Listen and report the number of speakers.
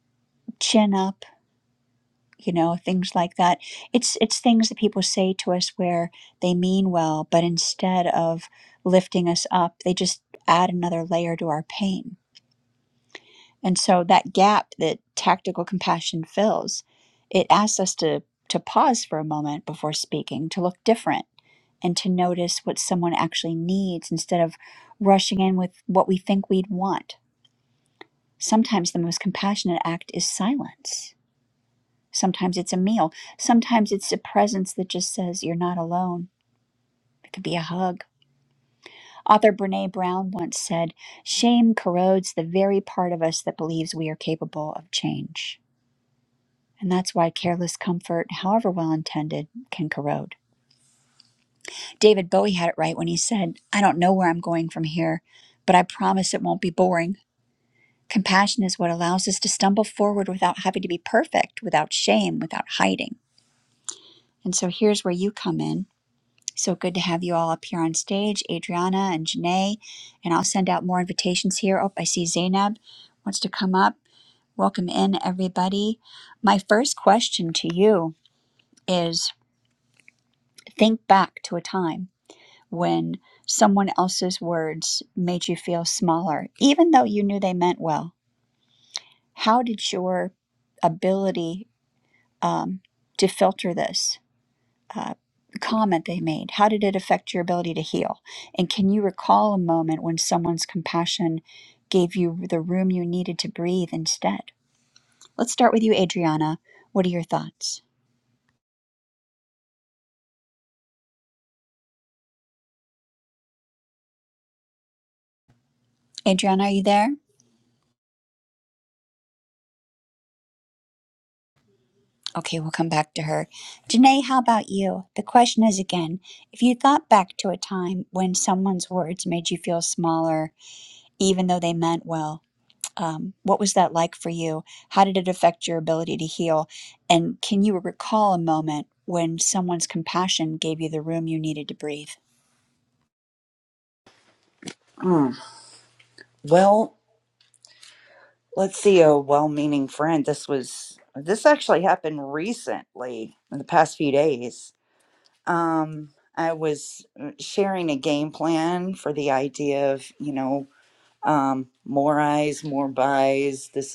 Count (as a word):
two